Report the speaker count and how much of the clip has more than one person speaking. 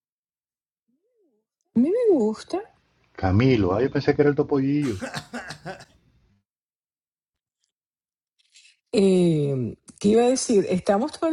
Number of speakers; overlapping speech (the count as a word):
two, no overlap